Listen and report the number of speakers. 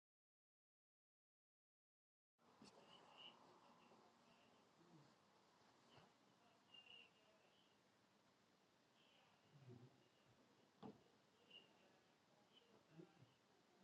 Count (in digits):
0